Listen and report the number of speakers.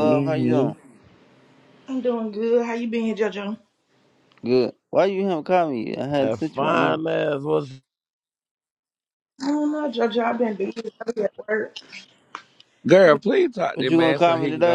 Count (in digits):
4